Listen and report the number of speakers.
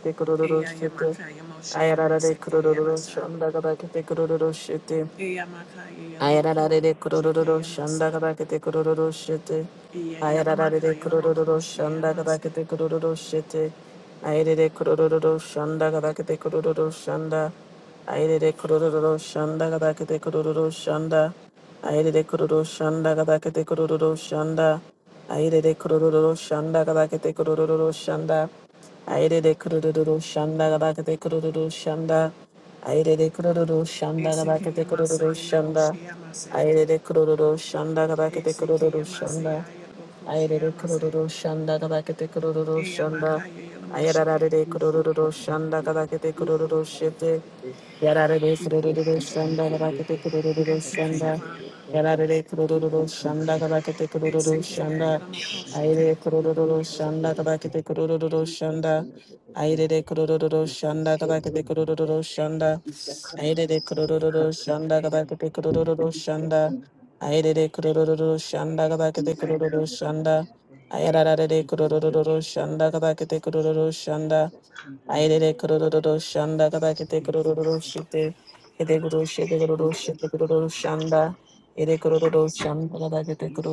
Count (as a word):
three